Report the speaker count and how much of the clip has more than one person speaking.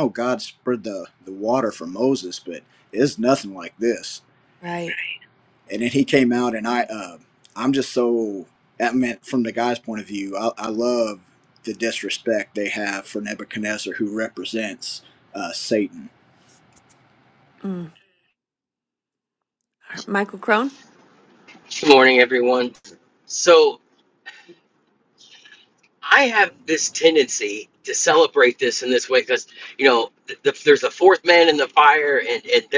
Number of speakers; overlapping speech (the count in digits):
3, no overlap